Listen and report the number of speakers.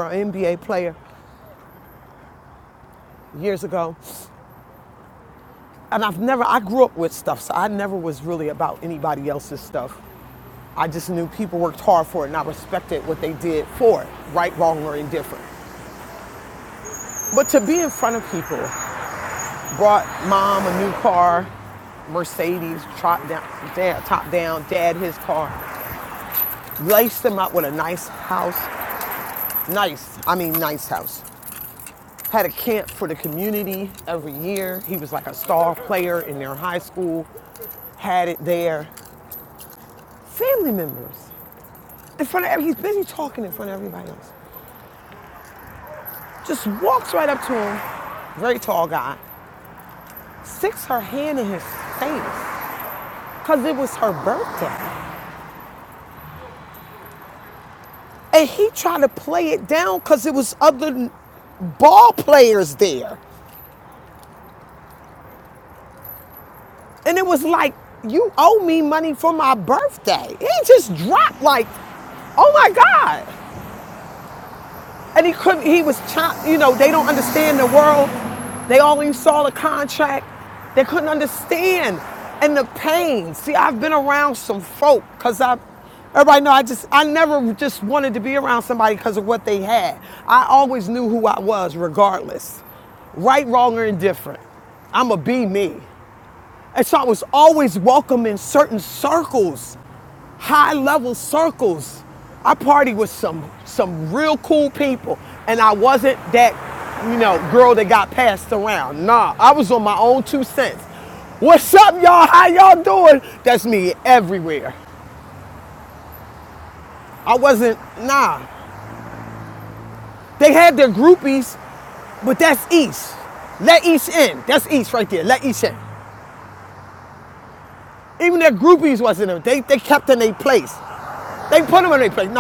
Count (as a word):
one